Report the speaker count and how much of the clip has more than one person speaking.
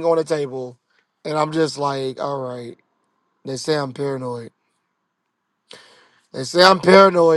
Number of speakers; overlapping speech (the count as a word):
one, no overlap